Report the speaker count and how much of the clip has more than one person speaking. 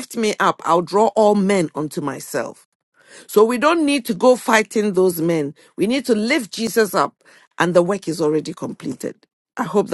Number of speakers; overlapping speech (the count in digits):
1, no overlap